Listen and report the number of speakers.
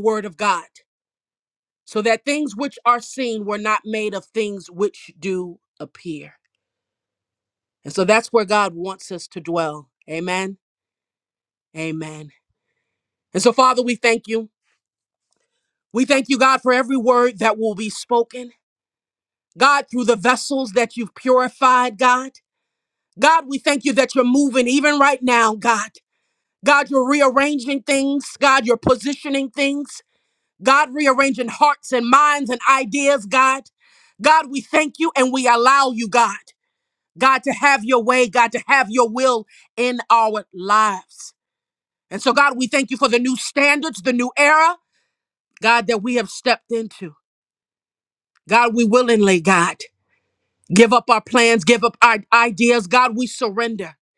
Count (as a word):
one